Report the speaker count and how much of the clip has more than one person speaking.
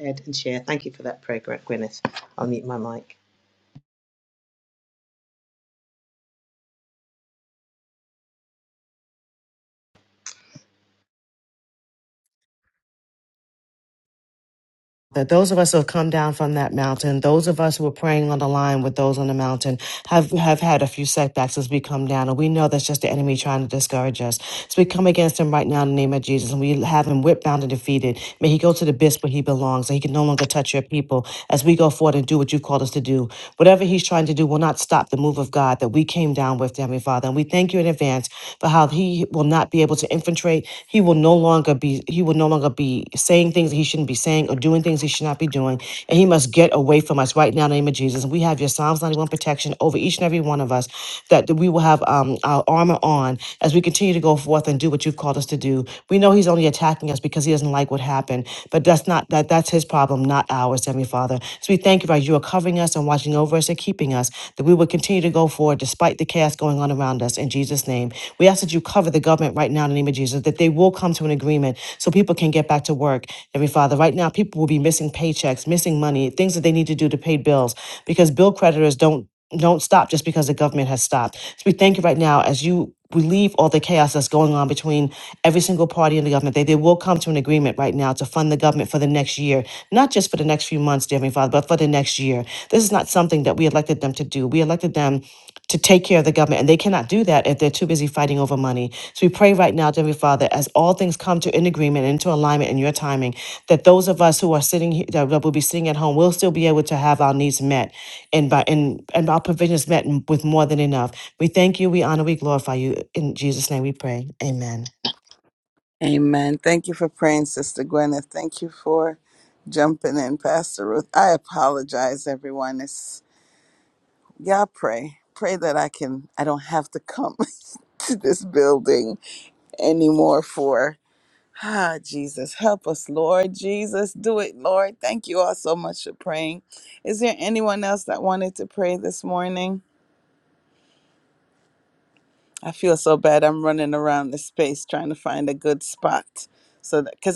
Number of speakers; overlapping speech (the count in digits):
3, no overlap